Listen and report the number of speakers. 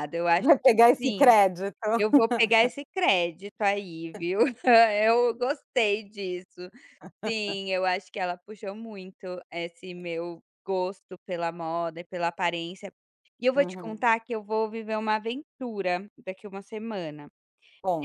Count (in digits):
2